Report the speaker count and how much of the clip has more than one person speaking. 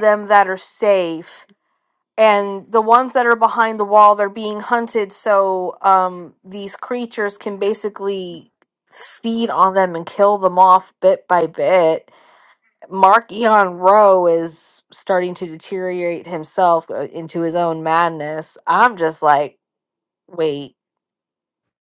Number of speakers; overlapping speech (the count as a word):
one, no overlap